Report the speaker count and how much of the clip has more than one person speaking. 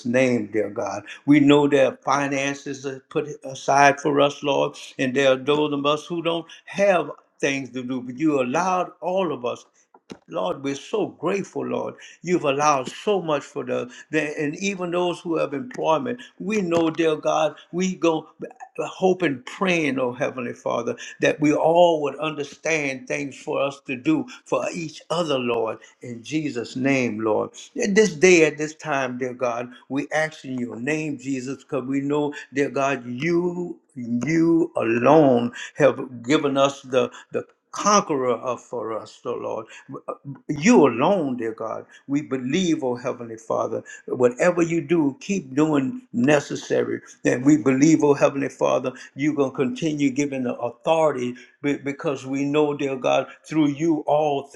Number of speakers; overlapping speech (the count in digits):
1, no overlap